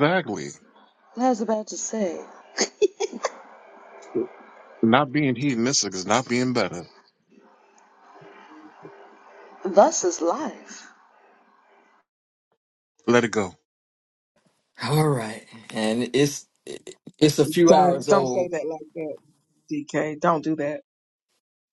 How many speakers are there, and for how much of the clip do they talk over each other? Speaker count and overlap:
4, about 5%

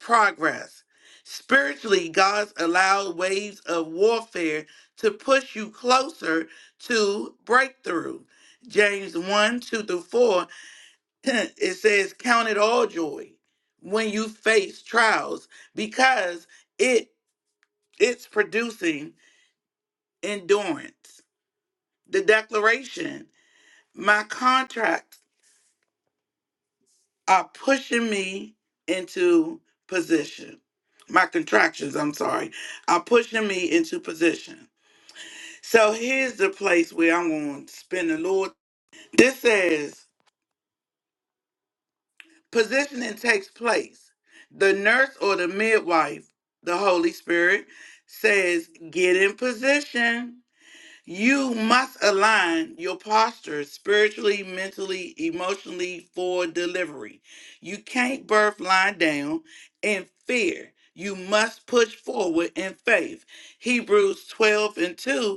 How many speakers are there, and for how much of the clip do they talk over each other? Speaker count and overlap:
1, no overlap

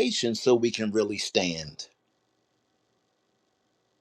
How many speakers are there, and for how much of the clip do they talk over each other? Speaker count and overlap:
1, no overlap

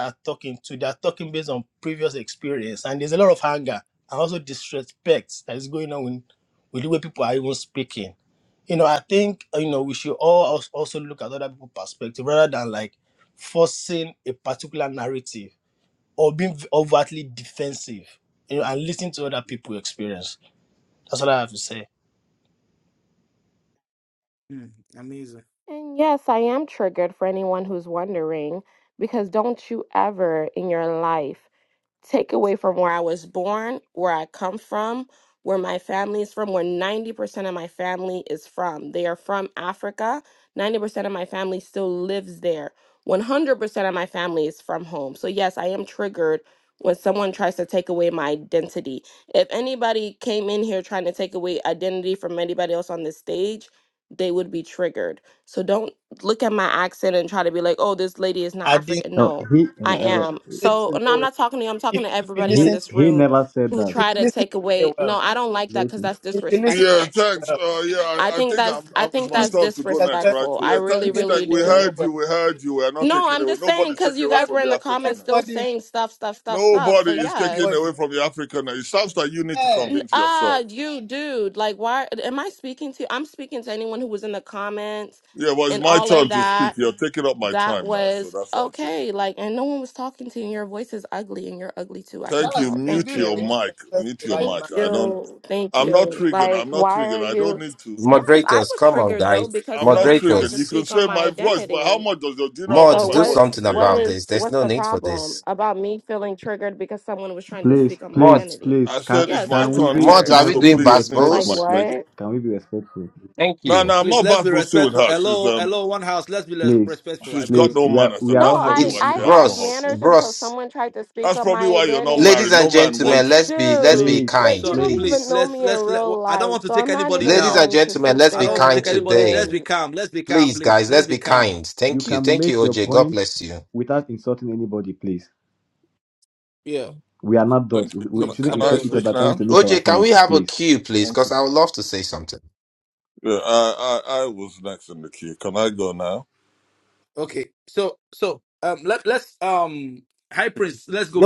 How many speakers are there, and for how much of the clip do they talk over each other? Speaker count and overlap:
6, about 34%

